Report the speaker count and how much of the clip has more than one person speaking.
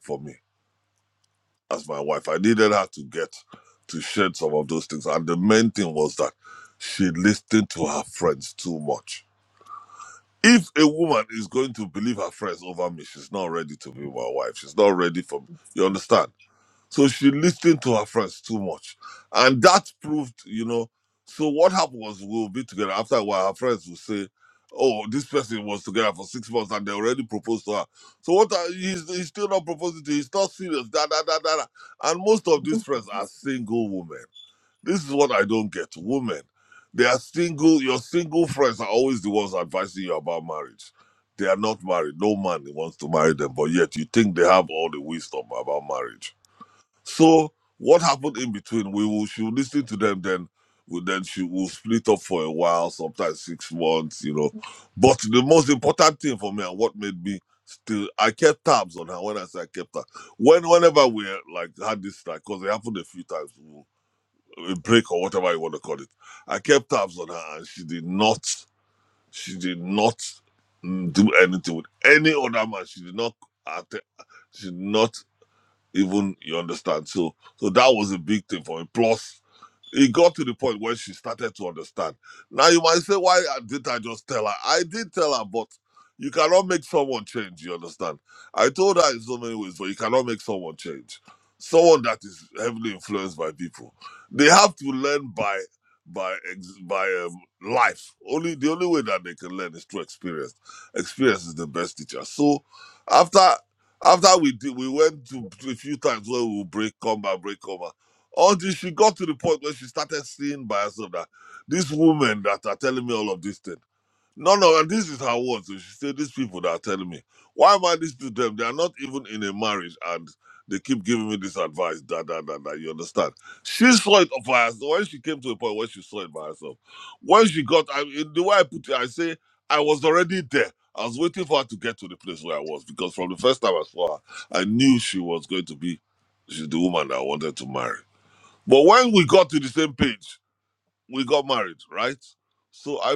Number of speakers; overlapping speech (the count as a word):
one, no overlap